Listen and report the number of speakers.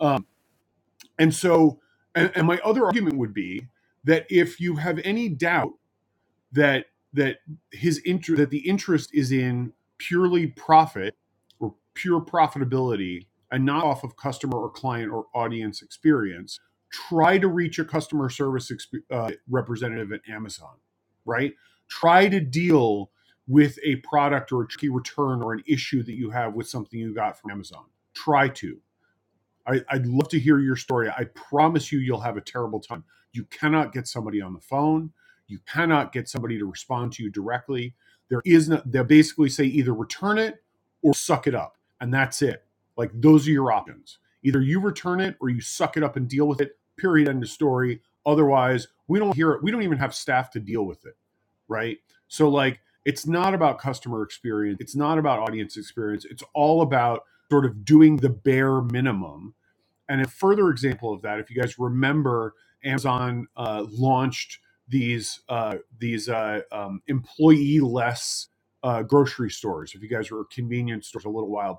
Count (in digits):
1